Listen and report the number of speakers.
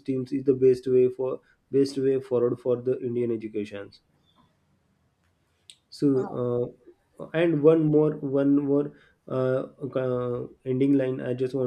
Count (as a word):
one